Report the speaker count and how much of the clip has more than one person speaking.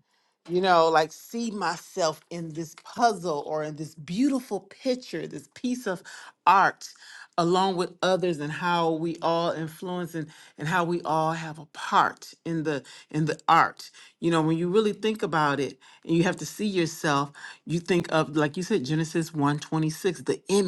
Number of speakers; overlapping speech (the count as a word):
one, no overlap